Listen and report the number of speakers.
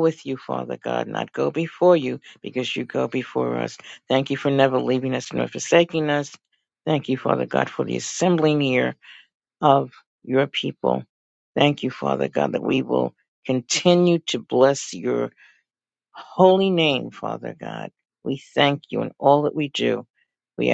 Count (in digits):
1